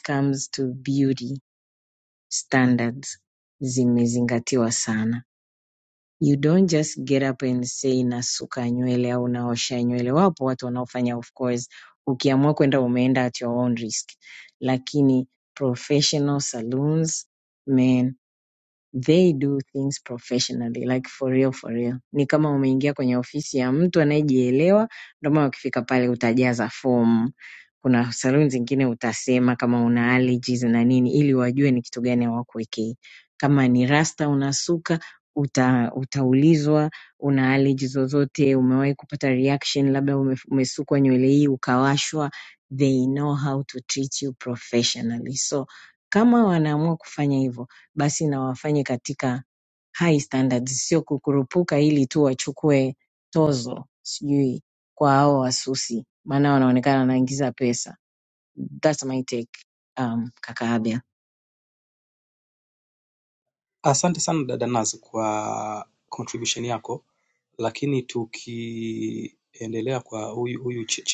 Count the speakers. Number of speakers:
2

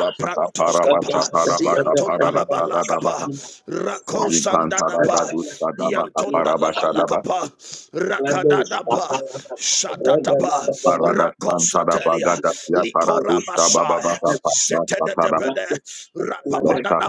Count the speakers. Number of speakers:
3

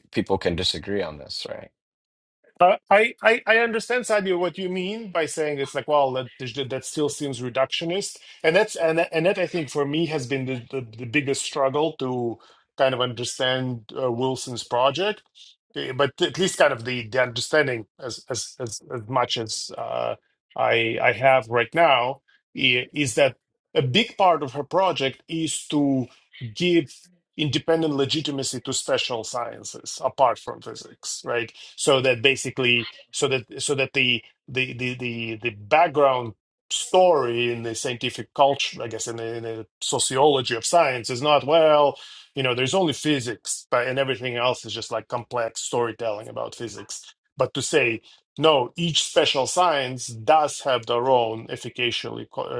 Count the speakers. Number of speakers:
2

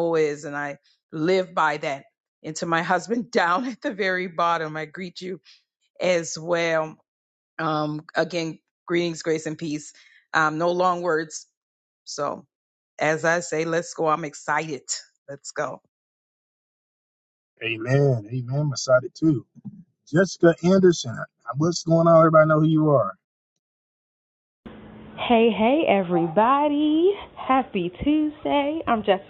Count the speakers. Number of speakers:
3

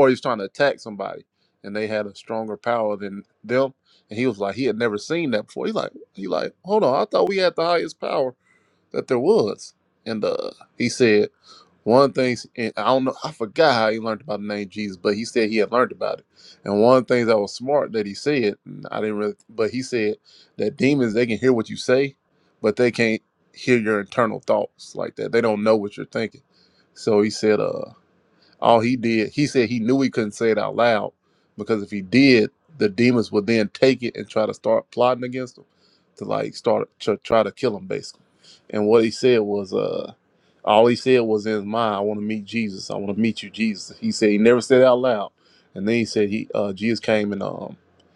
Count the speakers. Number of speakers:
1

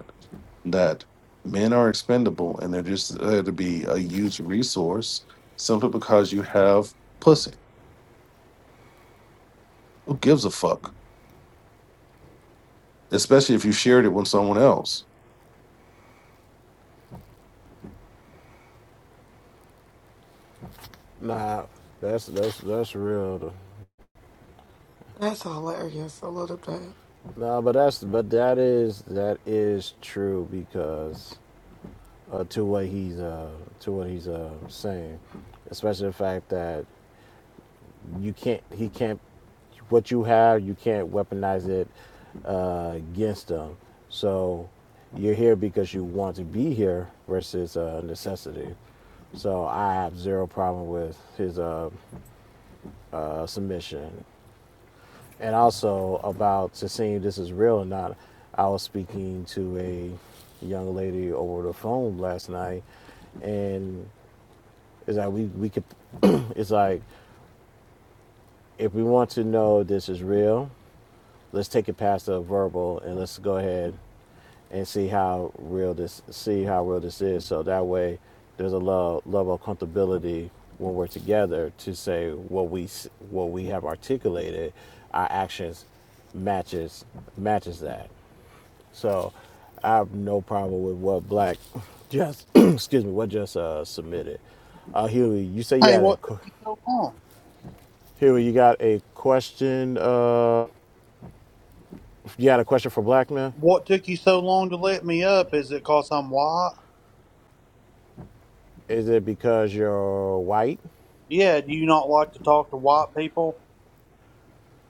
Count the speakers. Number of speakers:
4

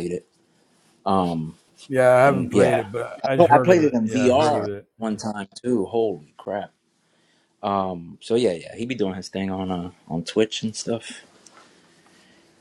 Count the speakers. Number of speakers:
2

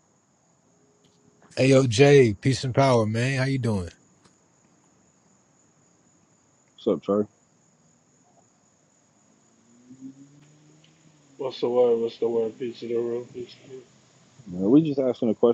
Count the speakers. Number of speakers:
3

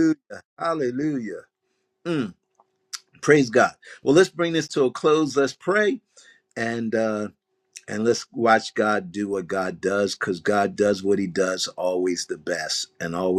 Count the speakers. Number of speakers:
1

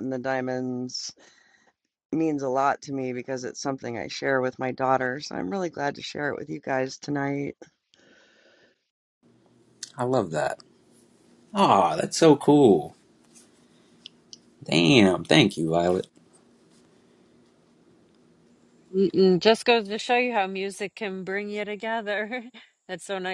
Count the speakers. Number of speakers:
3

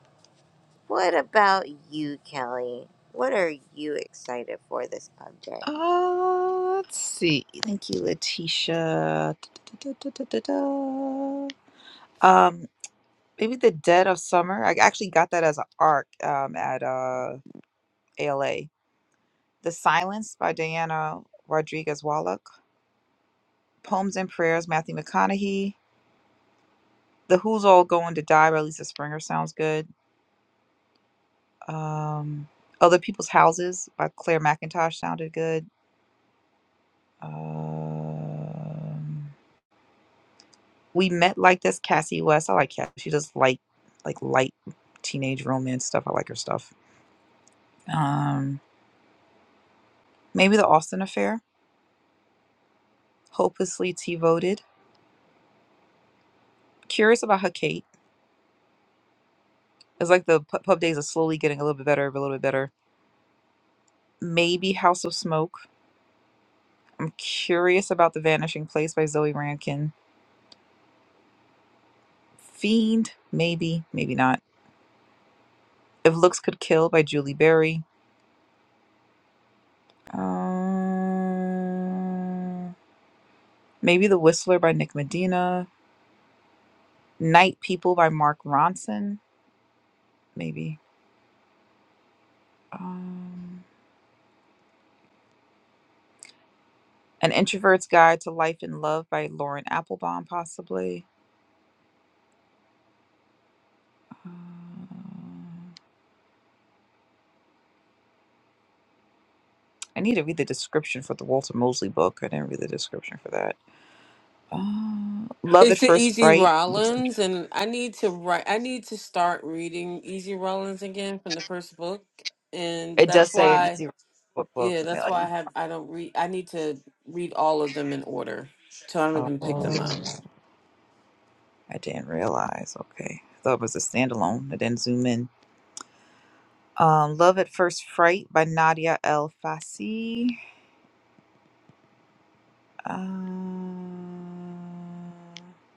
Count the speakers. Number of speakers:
3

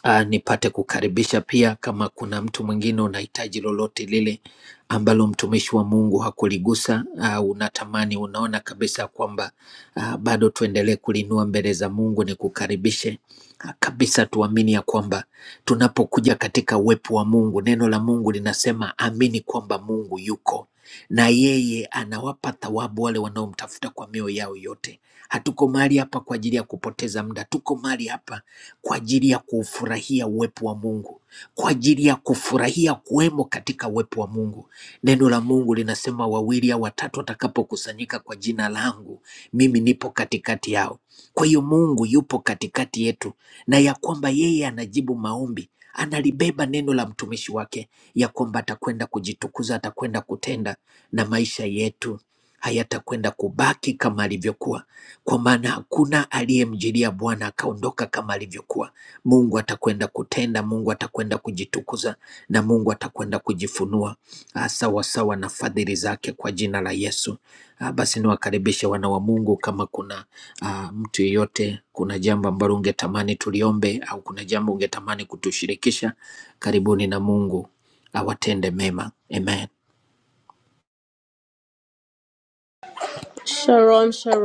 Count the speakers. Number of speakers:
2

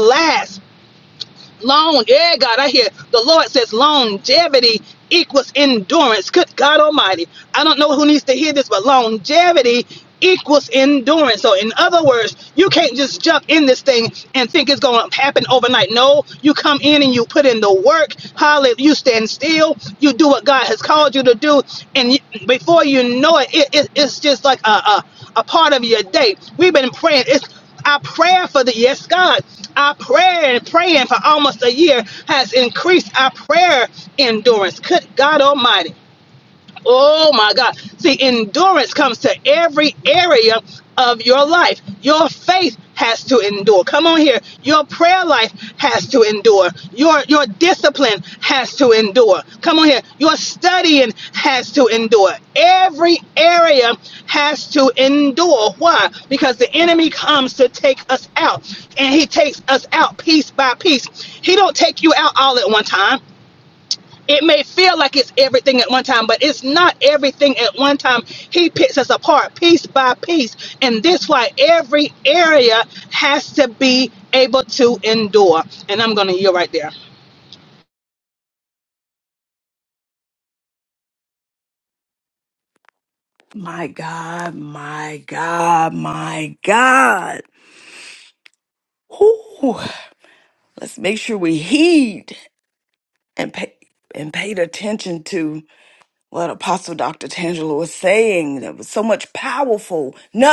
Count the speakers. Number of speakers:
2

